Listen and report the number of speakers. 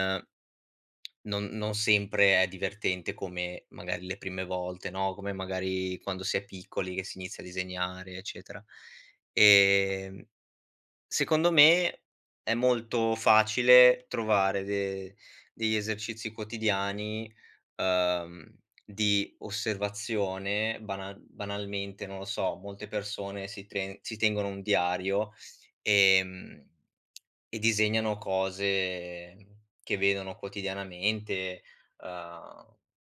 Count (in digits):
1